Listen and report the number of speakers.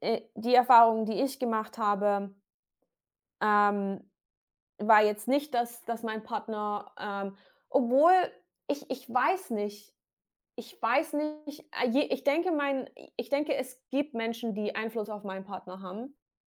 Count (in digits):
1